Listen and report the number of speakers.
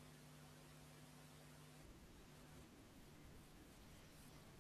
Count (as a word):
zero